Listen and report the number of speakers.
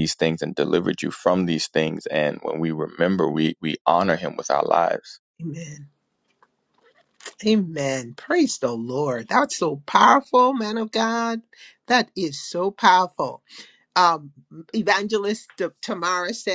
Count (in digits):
2